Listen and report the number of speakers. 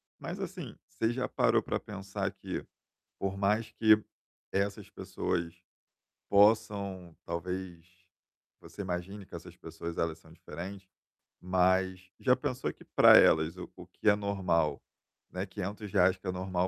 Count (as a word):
one